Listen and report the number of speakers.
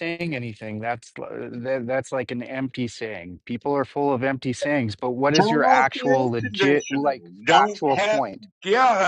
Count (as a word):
two